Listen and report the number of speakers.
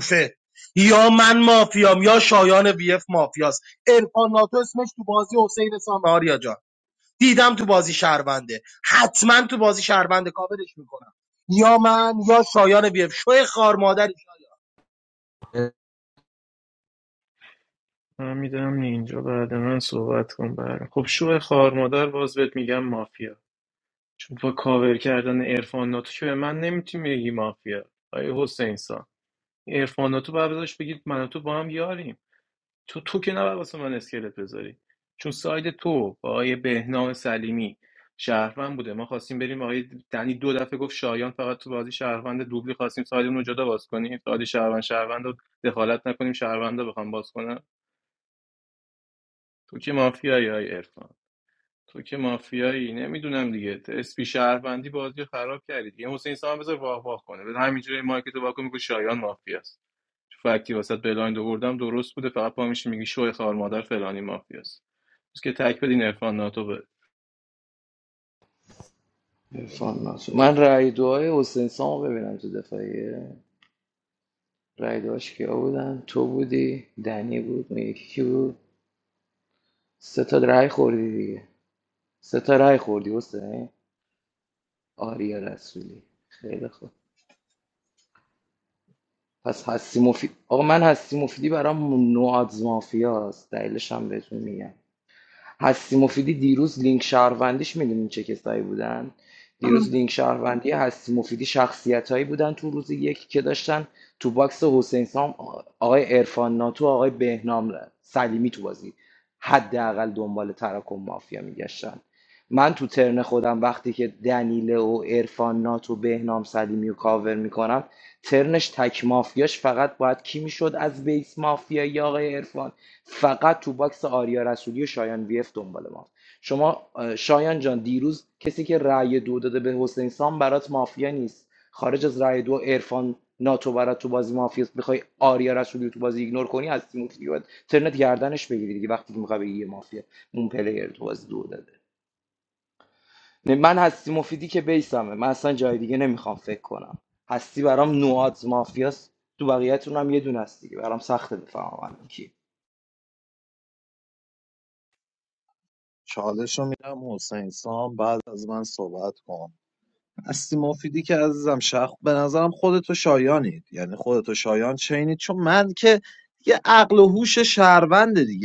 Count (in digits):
4